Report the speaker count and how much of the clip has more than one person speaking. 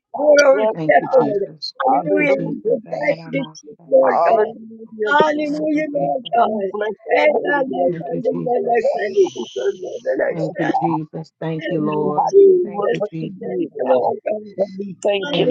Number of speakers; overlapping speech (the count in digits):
3, about 68%